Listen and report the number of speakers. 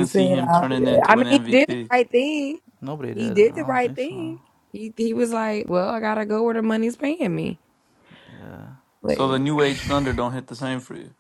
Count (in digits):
3